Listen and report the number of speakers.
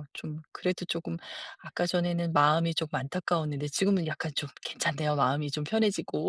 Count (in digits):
1